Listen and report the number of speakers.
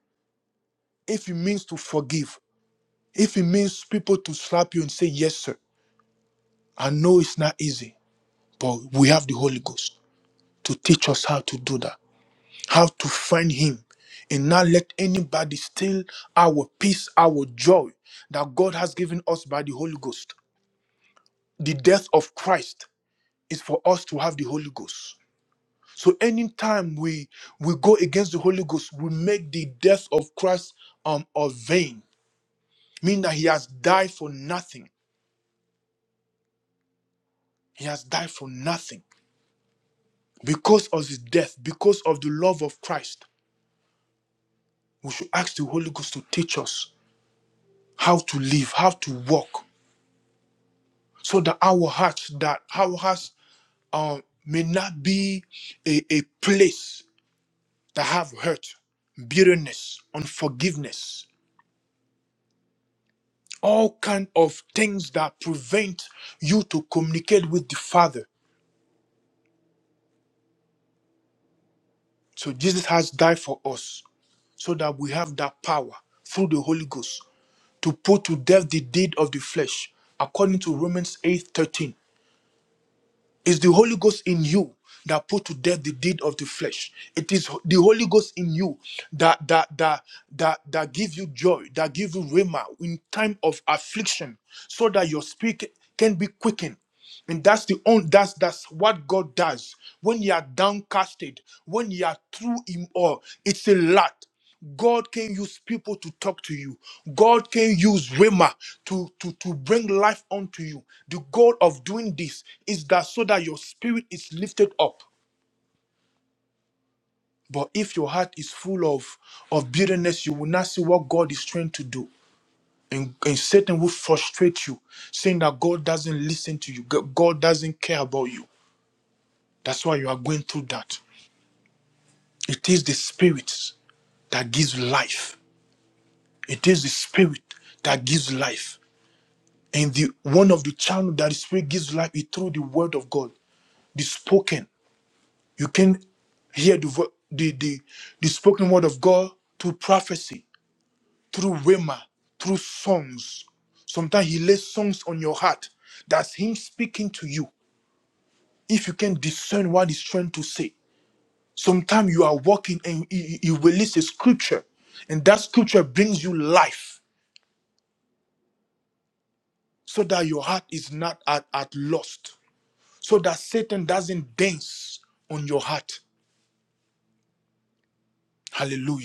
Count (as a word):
one